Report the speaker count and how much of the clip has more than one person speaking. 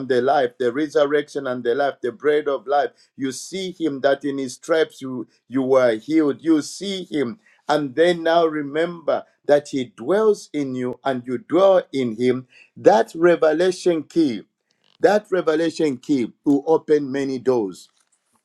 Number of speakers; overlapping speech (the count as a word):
one, no overlap